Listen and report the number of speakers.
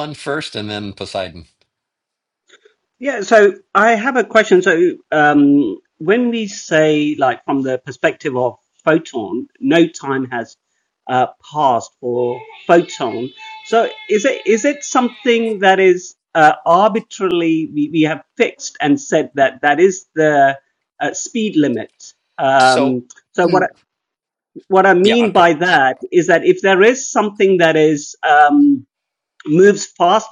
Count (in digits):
2